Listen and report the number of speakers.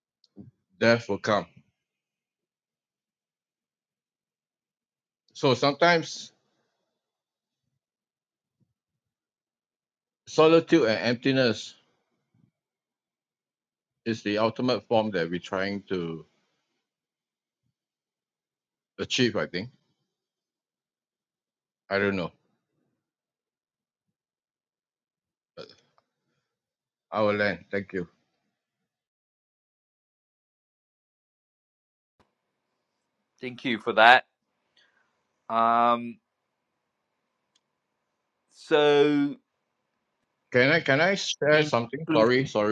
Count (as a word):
two